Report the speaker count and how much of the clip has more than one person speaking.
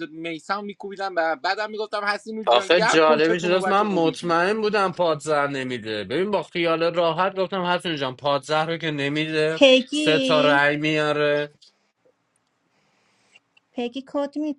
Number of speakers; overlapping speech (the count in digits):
3, about 17%